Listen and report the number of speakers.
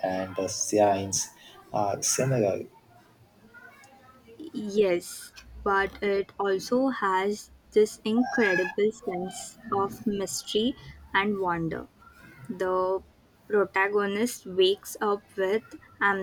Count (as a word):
two